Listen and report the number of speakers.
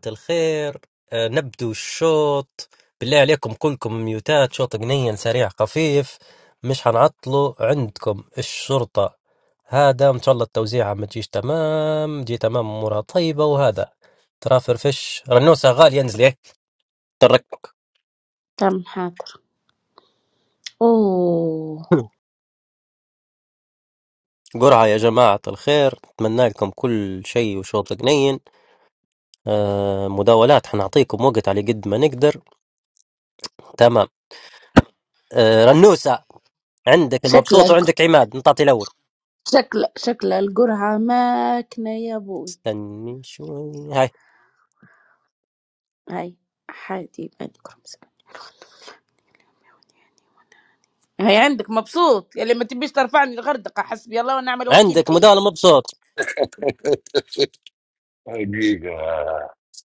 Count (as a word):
three